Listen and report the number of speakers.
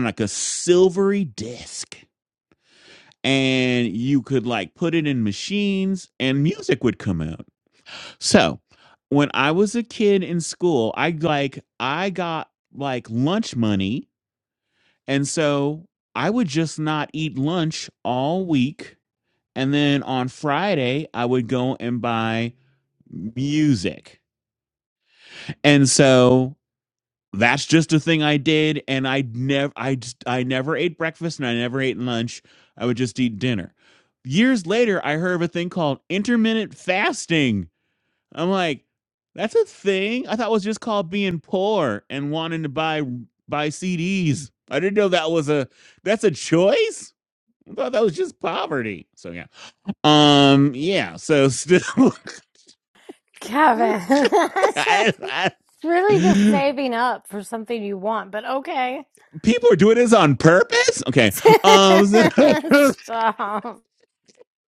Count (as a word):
two